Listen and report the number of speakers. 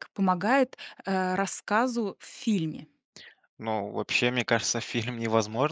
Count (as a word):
two